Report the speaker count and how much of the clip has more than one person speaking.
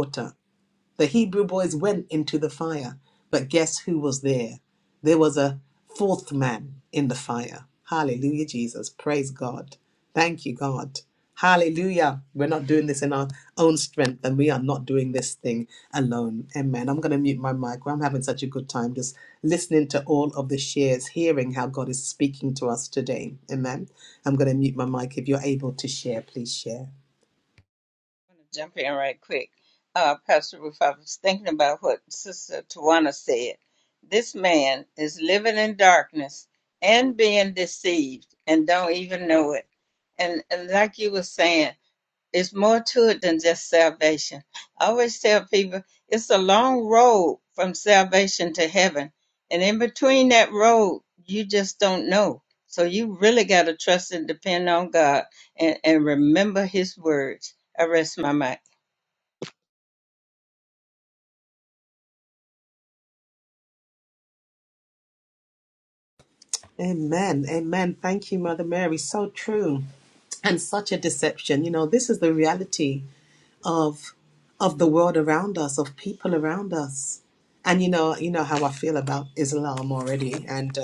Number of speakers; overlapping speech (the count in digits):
2, no overlap